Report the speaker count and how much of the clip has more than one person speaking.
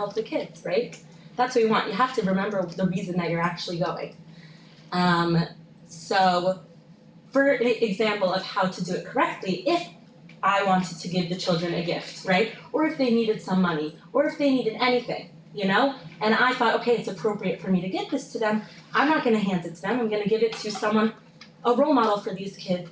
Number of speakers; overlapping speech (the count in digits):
1, no overlap